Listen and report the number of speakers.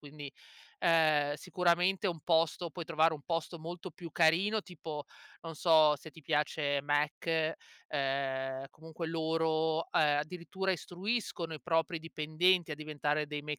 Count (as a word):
one